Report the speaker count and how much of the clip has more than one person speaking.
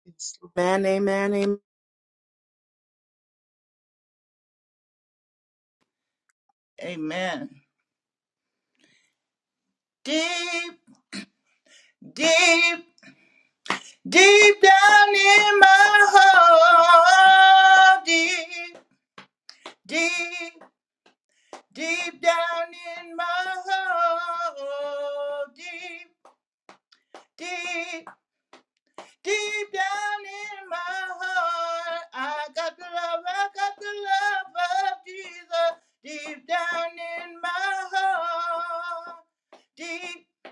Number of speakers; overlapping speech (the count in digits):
2, no overlap